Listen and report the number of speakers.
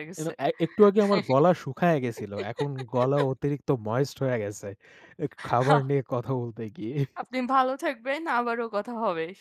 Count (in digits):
2